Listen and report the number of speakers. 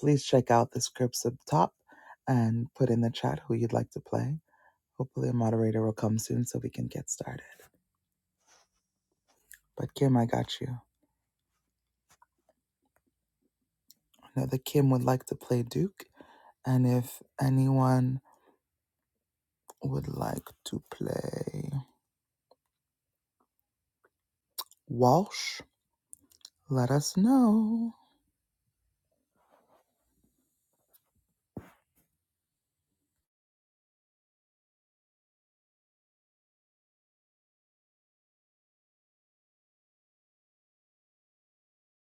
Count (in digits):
1